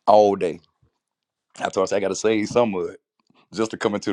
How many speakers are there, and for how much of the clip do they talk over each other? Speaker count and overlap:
one, no overlap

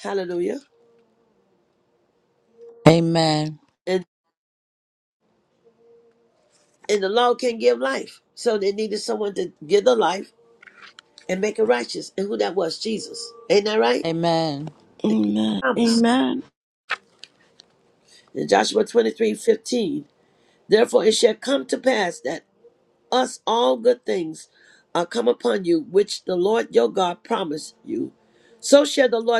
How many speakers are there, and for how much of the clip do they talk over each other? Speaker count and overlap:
three, about 1%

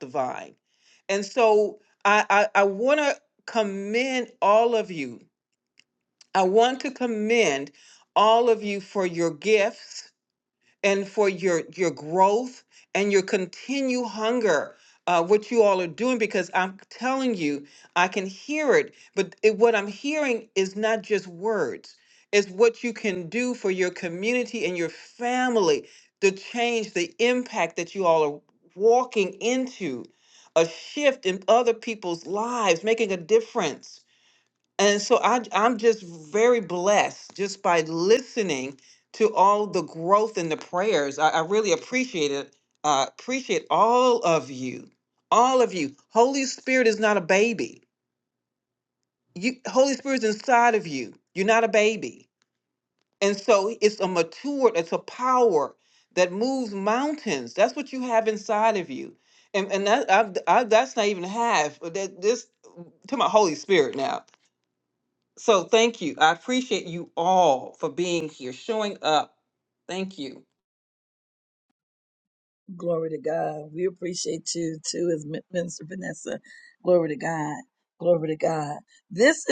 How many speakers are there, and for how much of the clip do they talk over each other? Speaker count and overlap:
two, no overlap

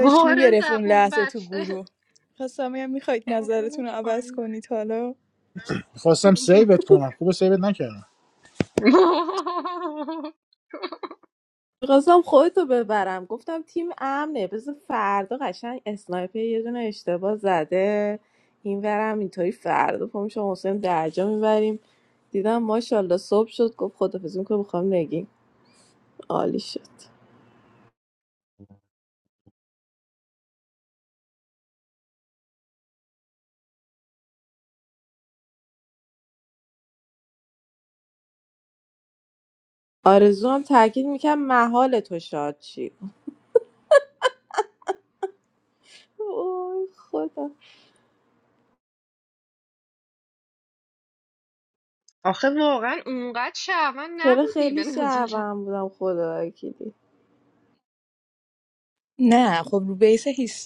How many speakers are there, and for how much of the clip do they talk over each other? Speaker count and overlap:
four, about 7%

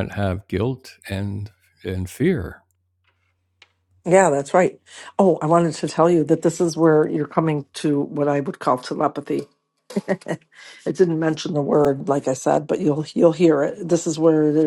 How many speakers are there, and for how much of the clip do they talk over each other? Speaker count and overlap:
two, no overlap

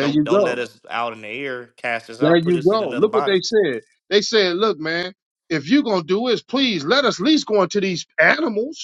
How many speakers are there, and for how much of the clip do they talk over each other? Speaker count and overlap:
two, about 19%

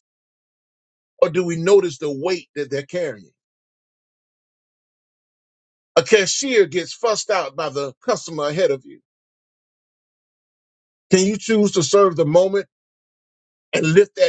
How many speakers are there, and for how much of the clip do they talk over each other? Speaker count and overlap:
one, no overlap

